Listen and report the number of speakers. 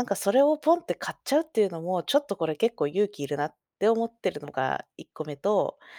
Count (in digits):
1